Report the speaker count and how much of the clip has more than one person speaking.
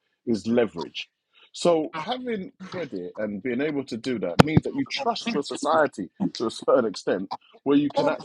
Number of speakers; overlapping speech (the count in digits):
1, no overlap